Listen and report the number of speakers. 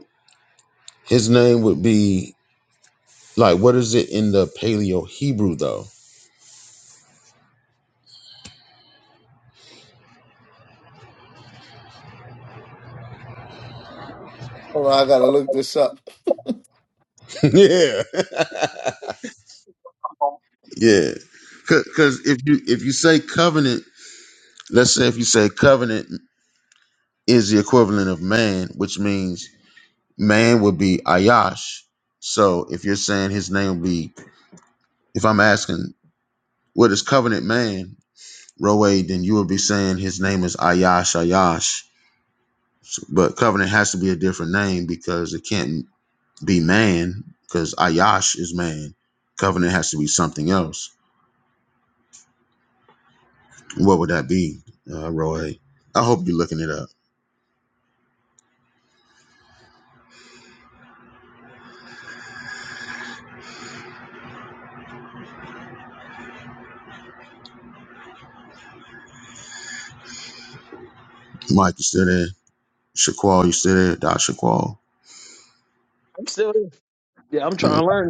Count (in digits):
3